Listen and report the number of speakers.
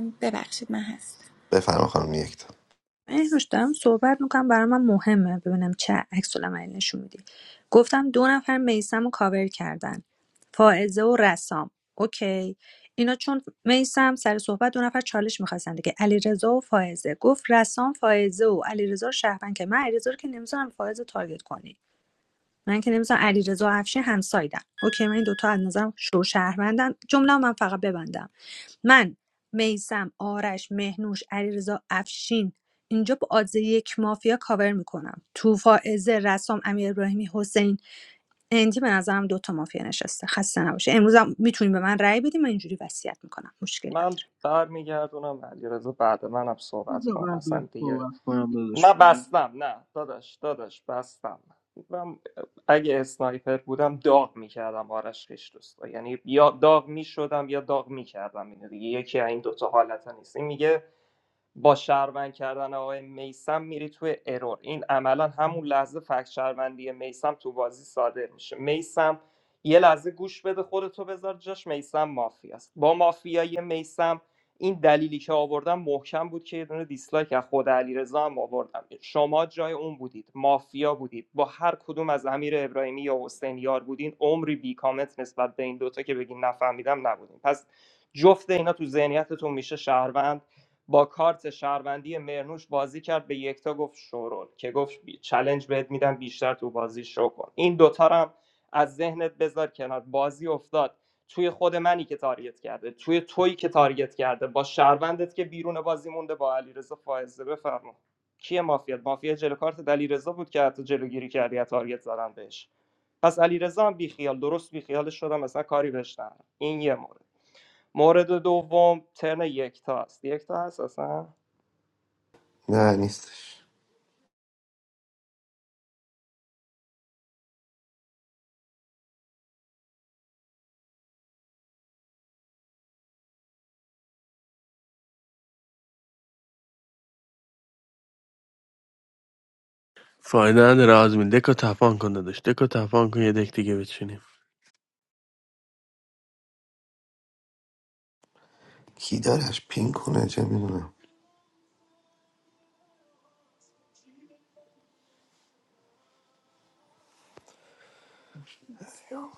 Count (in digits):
6